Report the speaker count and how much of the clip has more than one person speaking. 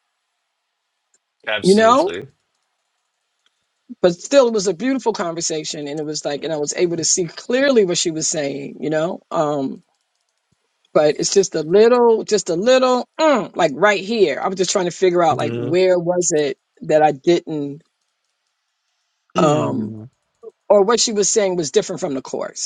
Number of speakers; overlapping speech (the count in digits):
2, about 7%